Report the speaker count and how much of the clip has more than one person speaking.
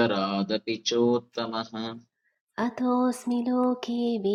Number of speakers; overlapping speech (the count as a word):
two, no overlap